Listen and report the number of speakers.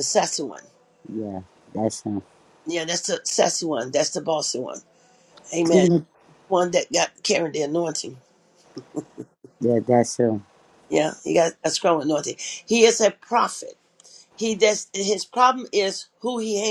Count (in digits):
2